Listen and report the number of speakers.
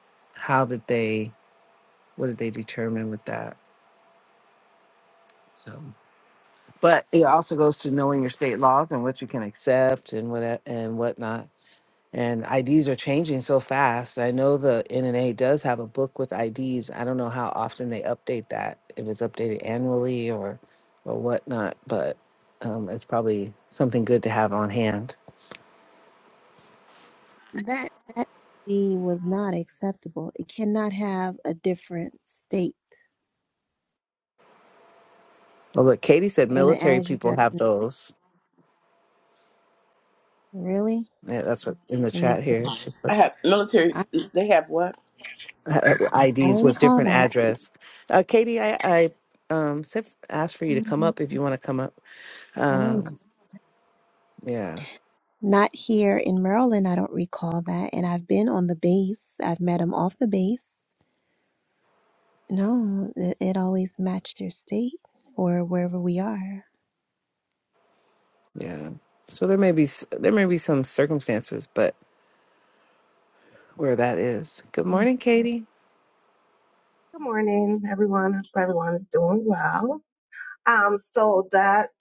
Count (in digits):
4